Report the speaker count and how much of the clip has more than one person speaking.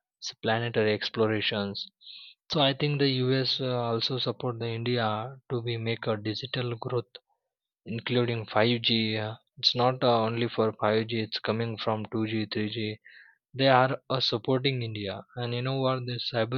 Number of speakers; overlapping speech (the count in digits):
1, no overlap